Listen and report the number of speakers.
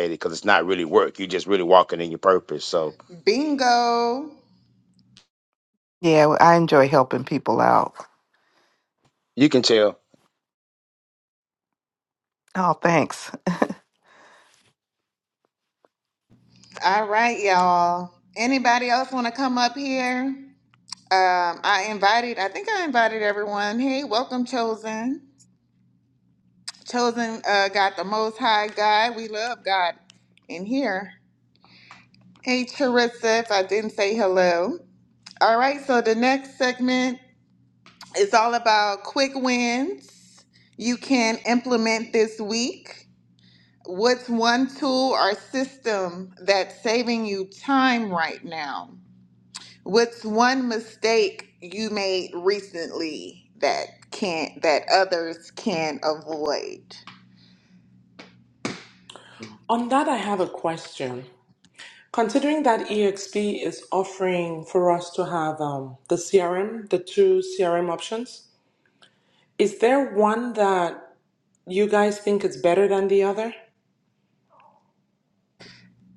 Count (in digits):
4